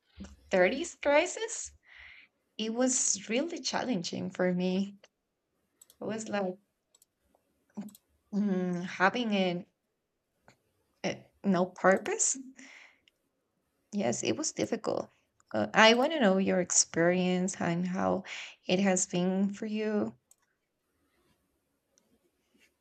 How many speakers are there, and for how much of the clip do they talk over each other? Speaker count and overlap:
1, no overlap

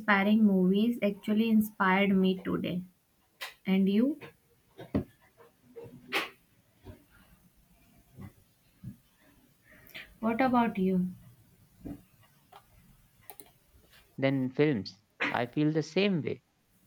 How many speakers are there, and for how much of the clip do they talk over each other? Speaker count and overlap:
2, no overlap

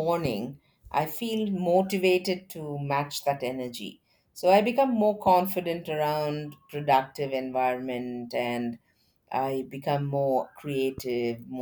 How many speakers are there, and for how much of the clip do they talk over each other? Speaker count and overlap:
1, no overlap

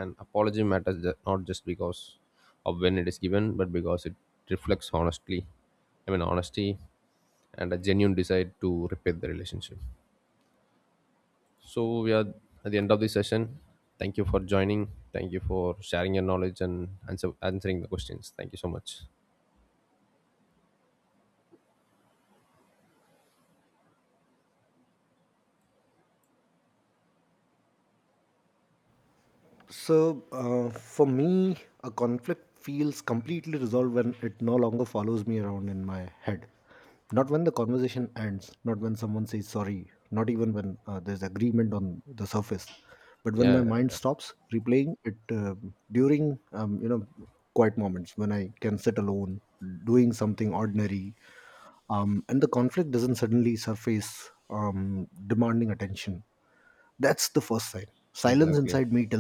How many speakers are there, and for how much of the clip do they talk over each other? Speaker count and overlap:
2, about 2%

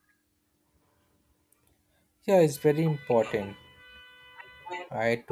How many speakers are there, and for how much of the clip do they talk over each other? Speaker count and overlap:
1, no overlap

